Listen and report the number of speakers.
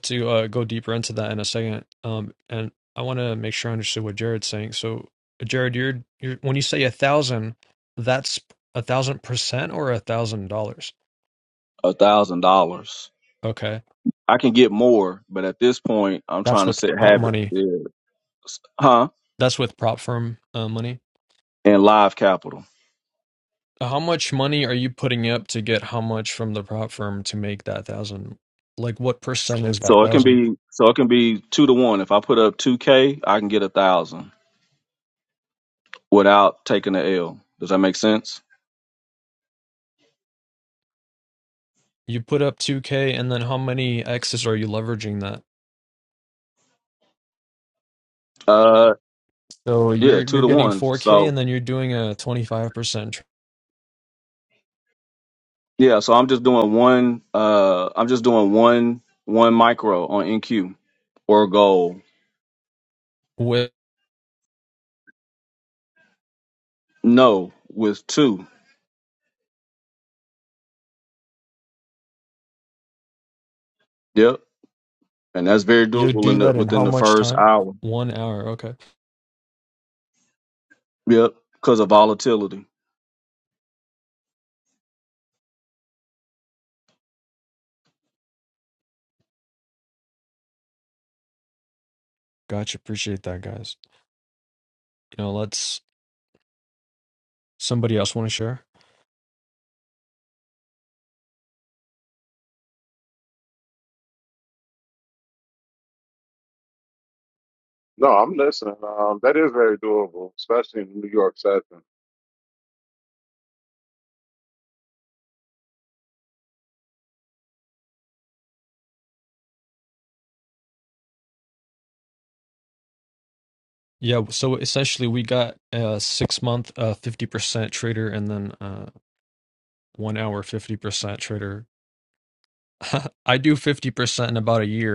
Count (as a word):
three